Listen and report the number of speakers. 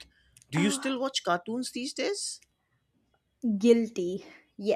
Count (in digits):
2